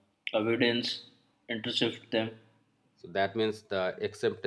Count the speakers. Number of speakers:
two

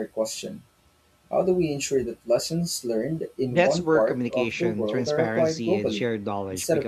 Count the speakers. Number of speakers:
two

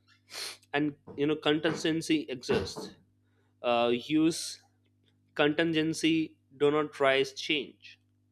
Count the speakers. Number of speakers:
one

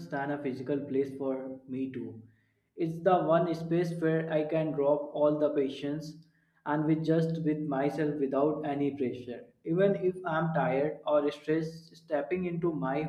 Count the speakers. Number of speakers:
one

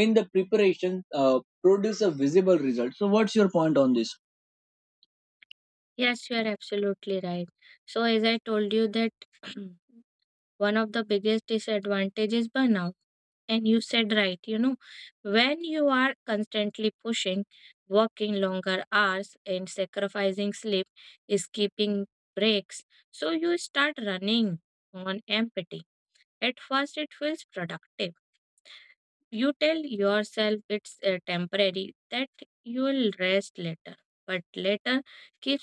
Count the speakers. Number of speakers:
two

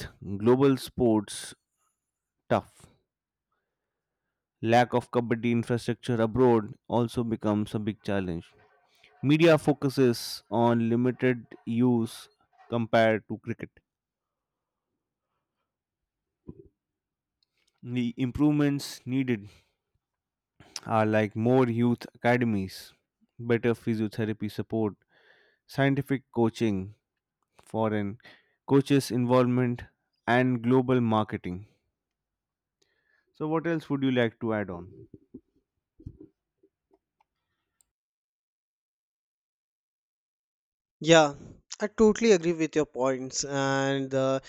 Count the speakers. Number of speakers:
two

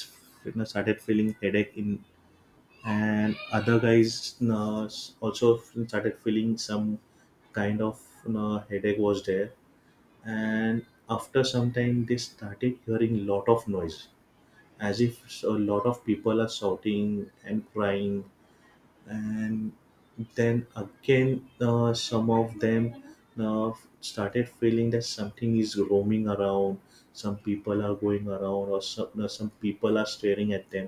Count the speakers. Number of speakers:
one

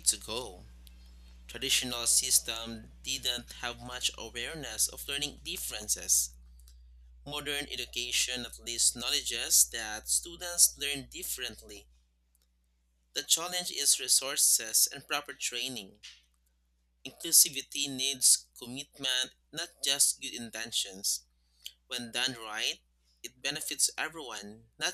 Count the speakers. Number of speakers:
one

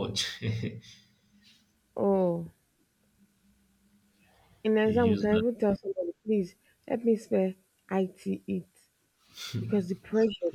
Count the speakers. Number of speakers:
two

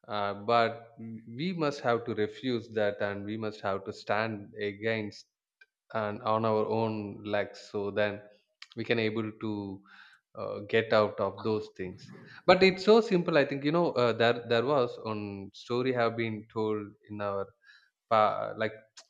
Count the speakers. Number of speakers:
one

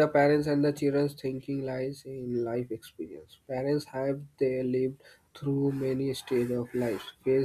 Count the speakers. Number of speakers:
one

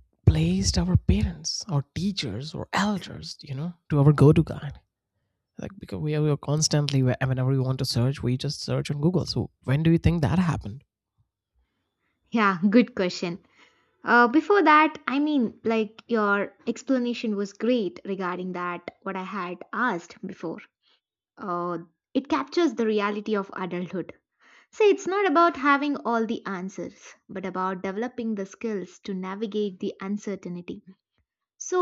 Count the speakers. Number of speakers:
two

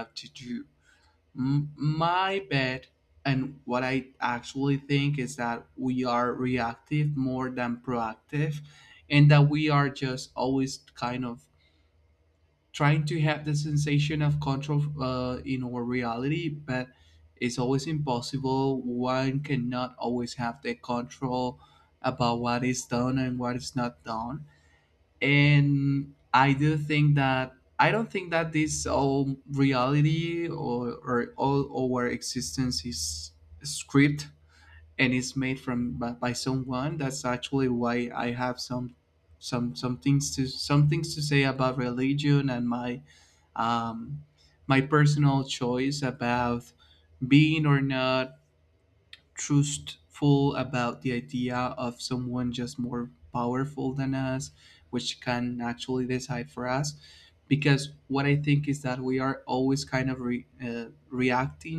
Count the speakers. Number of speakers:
one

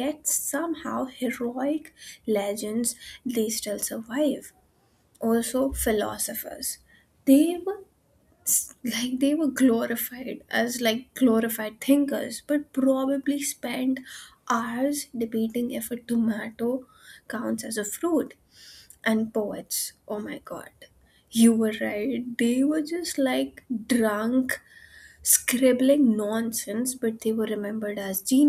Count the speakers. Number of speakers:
one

